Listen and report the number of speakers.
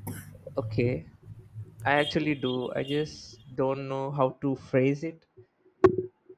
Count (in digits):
1